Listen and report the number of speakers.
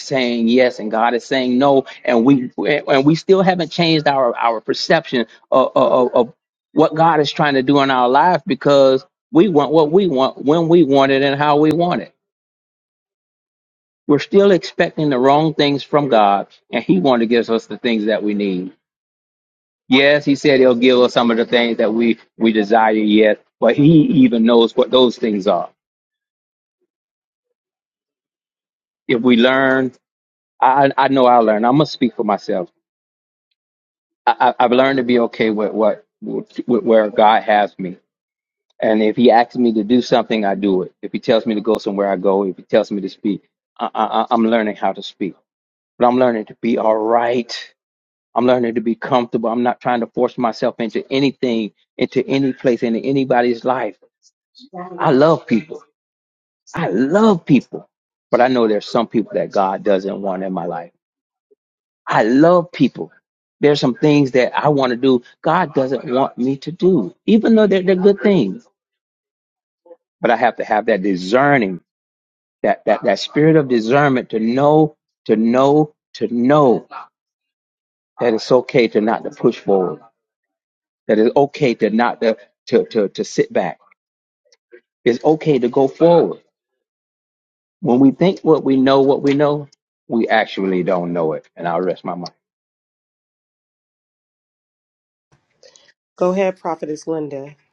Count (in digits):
2